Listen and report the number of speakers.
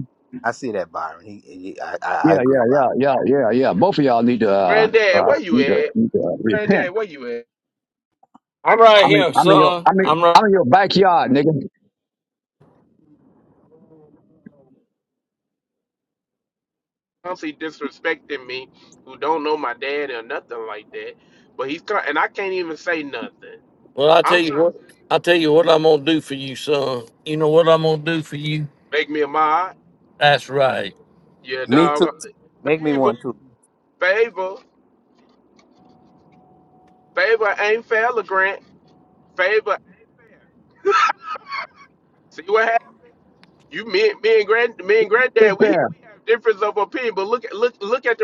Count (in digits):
4